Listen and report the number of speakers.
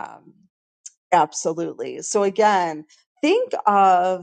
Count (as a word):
one